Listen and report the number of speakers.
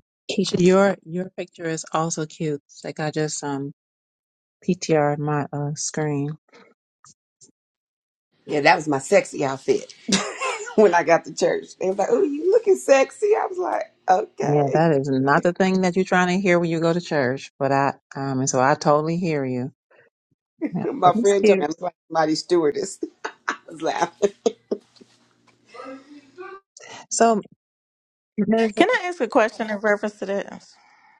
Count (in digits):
3